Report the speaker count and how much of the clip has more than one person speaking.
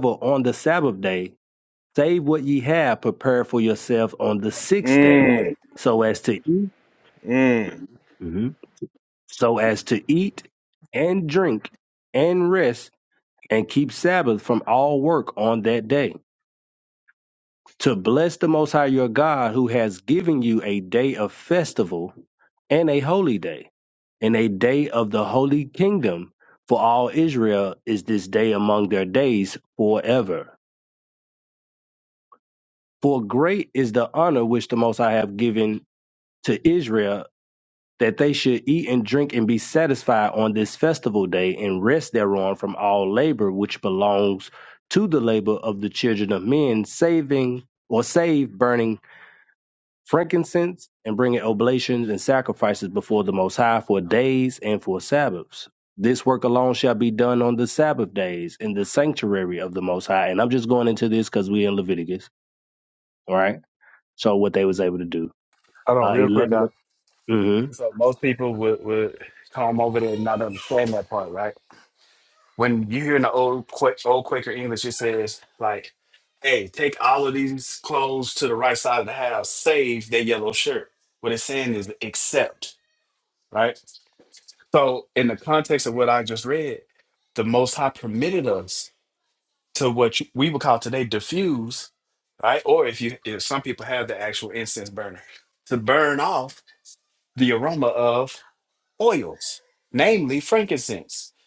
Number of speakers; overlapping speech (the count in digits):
3, about 1%